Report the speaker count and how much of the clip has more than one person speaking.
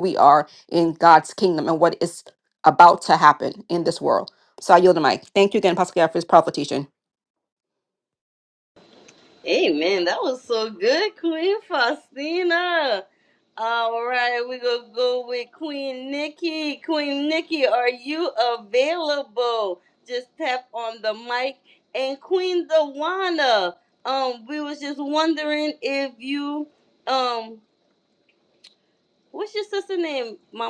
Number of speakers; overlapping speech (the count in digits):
2, no overlap